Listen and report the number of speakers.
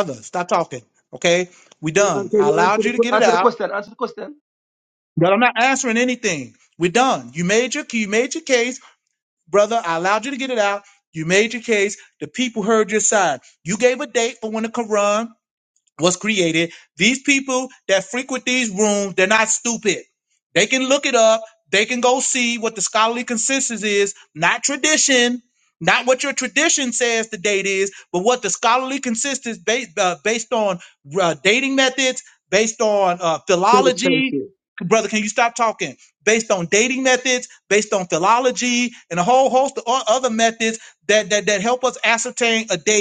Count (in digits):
2